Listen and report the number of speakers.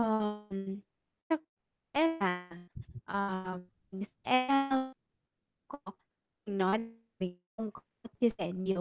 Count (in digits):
1